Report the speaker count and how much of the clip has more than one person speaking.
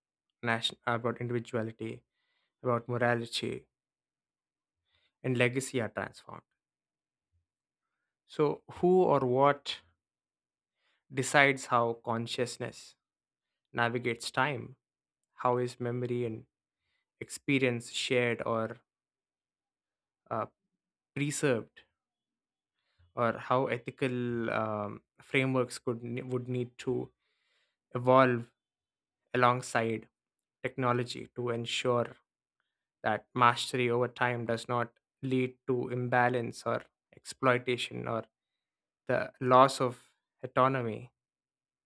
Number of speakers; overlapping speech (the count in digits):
1, no overlap